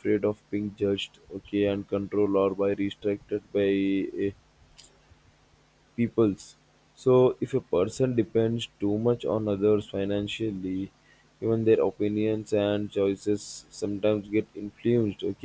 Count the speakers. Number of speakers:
one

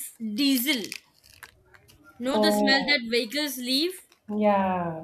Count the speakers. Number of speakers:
two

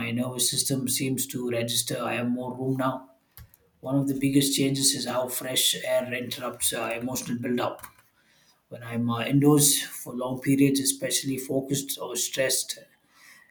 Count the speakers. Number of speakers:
one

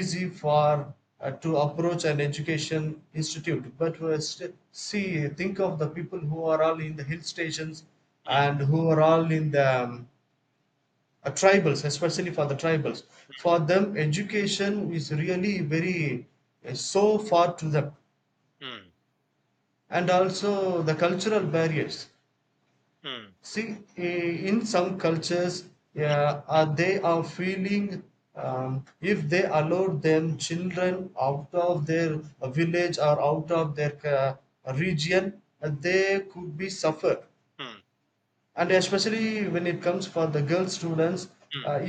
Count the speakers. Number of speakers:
two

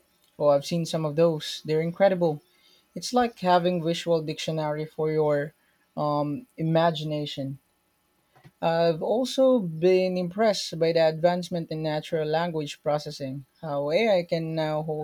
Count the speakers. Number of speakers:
one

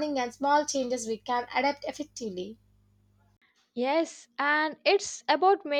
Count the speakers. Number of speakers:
two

